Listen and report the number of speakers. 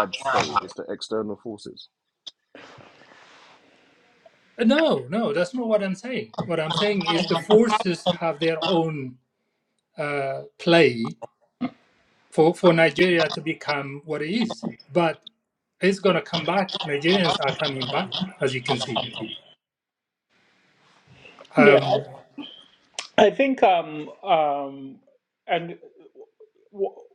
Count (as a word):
three